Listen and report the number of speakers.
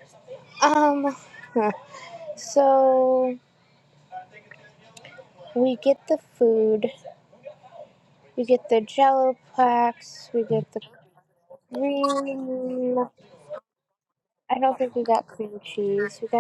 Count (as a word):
one